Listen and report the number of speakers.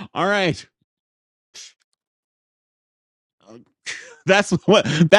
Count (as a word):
one